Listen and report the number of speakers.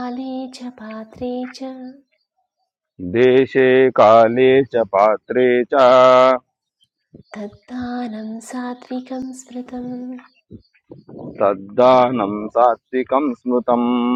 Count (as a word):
two